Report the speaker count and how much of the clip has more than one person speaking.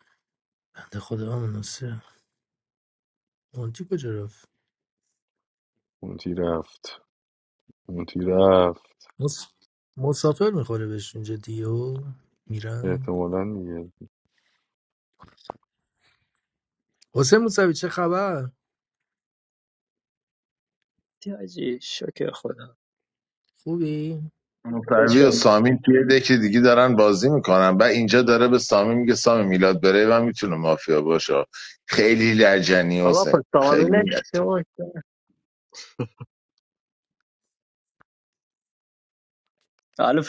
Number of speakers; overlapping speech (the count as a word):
four, about 4%